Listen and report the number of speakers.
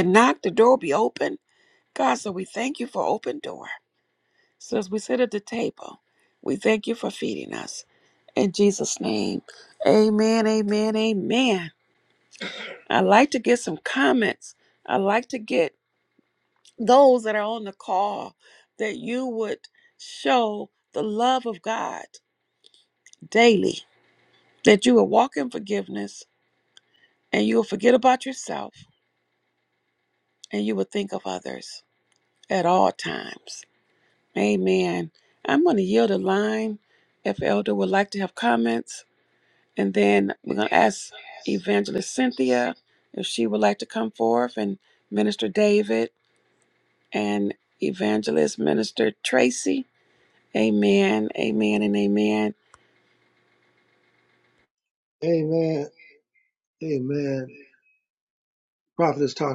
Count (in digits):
2